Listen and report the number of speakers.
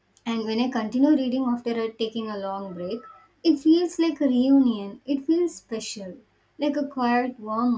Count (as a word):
one